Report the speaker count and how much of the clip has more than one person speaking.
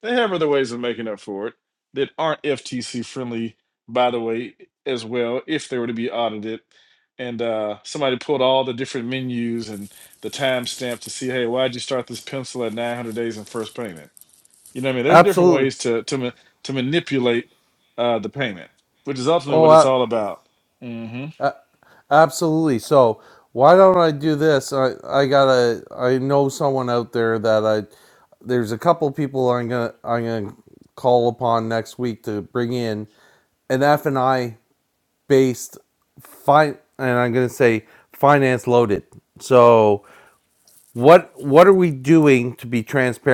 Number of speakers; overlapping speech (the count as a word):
two, about 2%